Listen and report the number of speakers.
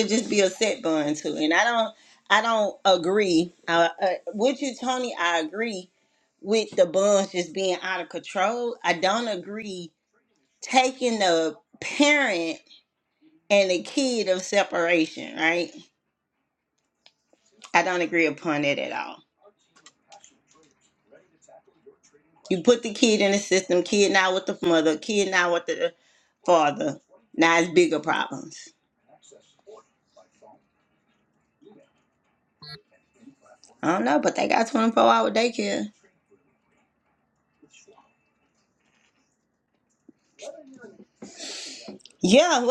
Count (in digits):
1